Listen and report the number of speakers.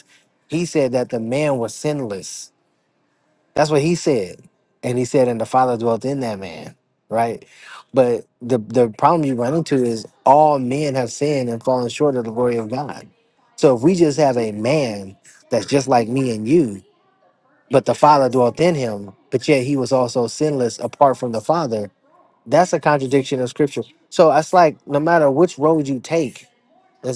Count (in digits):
1